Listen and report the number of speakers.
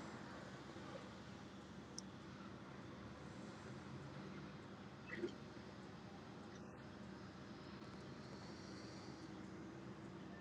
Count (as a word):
zero